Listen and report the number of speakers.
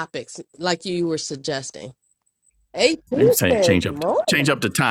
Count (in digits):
2